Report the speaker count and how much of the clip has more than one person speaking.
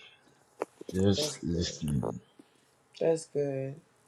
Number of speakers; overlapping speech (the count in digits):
2, about 15%